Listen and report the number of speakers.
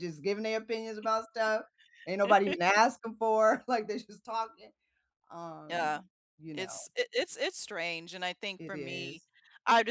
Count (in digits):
2